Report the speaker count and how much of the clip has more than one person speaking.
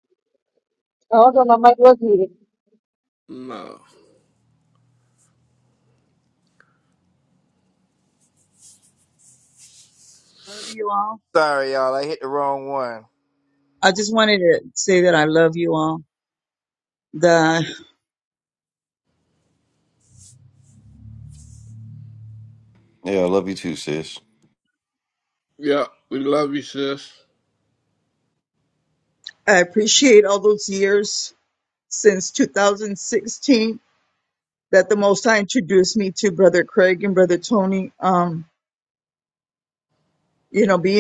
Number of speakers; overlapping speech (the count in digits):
5, no overlap